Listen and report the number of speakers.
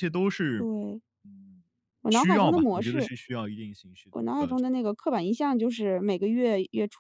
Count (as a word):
two